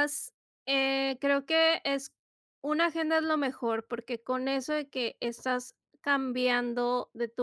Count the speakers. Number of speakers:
1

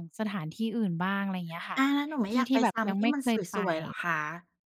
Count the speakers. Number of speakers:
2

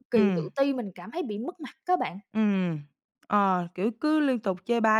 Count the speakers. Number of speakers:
2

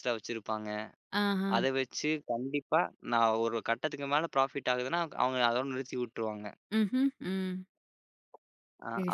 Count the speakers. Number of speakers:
2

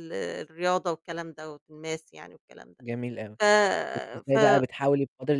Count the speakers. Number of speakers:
2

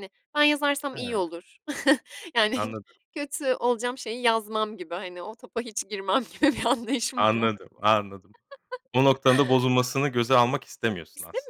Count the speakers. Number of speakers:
2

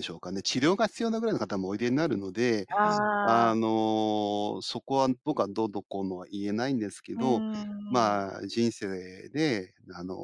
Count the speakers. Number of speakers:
2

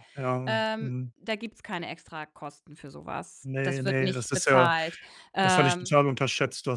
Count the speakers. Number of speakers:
2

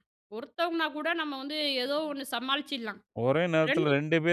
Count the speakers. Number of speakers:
2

